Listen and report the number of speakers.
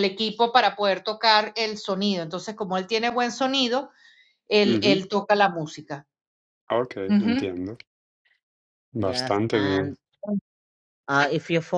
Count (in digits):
3